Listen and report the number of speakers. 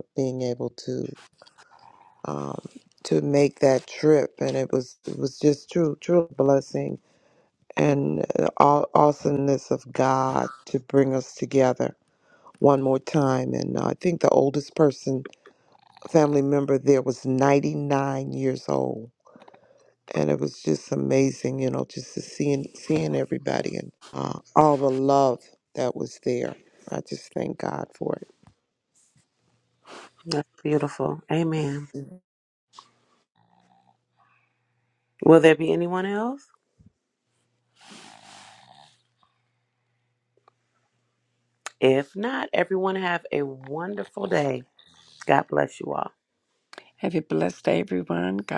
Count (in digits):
3